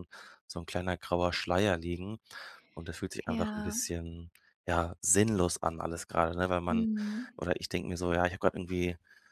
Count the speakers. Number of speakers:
2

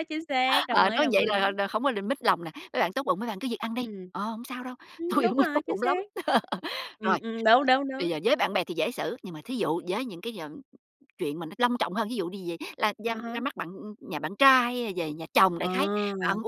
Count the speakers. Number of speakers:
2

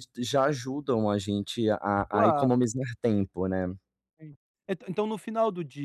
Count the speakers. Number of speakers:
2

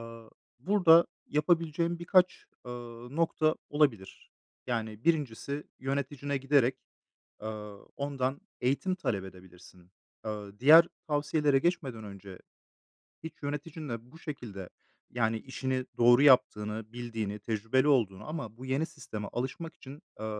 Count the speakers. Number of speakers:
1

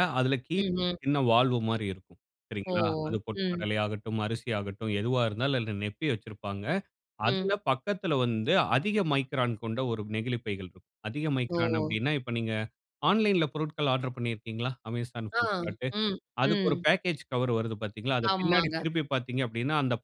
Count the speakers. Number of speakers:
2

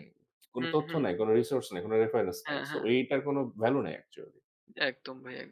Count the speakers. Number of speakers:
2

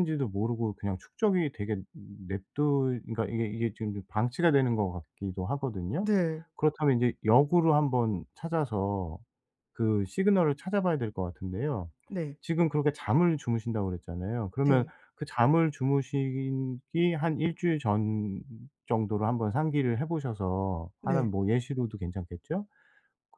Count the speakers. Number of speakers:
2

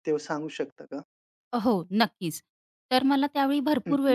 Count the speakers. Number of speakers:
2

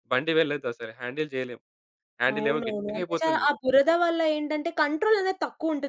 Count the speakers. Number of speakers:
2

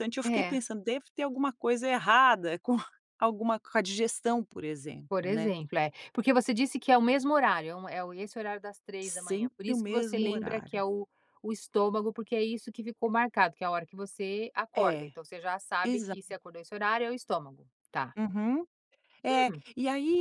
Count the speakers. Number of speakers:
2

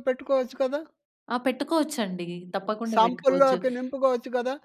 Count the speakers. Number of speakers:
2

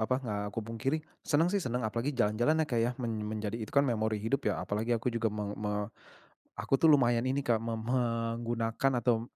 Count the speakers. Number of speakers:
1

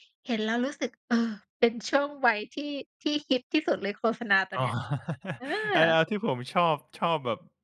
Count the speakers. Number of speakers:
2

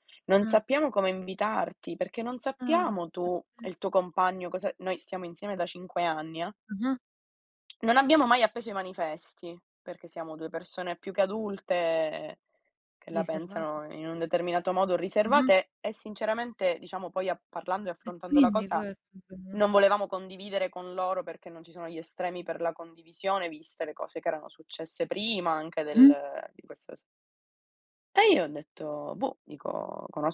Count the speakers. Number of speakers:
2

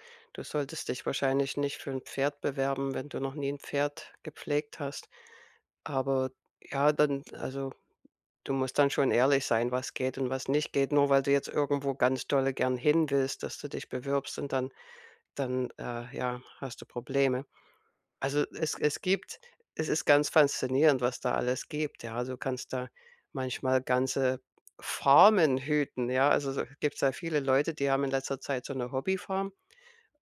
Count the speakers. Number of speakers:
1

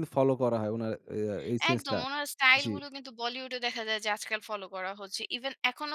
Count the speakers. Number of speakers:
2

